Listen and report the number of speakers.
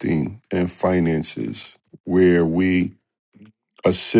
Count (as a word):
one